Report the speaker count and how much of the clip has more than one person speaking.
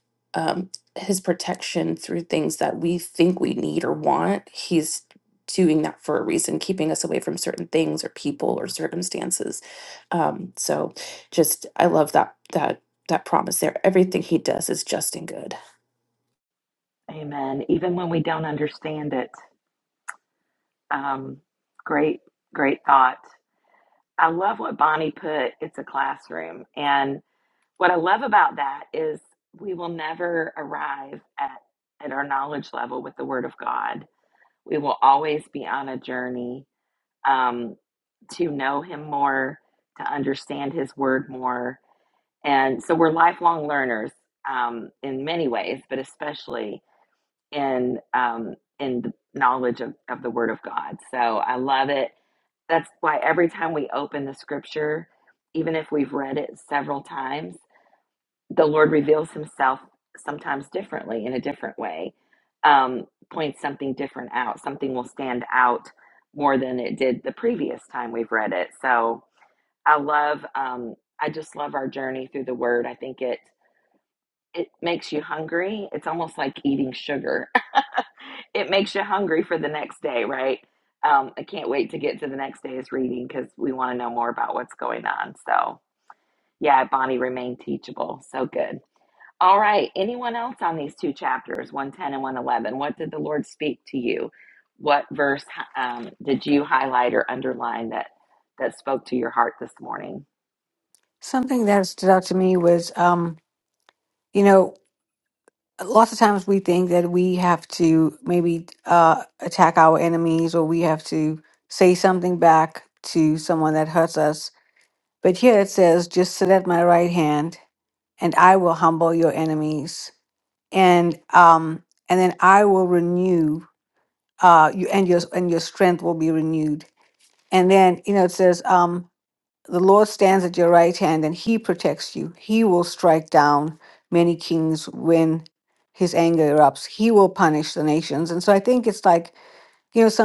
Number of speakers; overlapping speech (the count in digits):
3, no overlap